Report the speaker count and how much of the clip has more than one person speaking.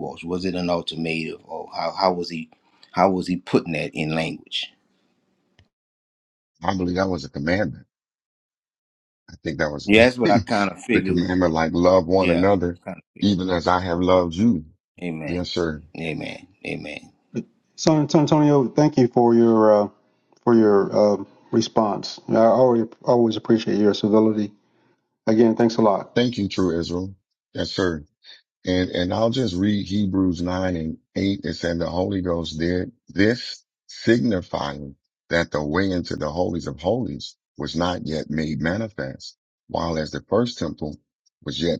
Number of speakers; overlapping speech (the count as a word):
three, about 2%